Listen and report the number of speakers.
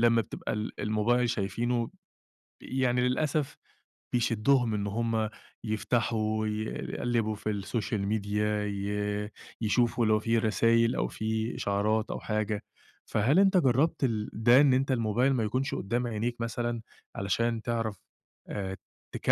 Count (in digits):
1